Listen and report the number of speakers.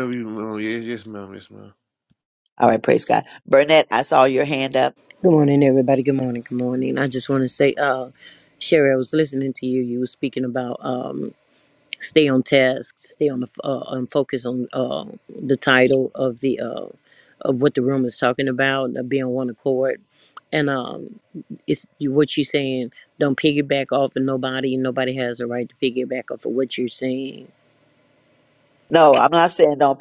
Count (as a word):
three